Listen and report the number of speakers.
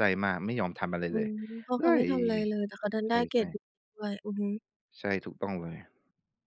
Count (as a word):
two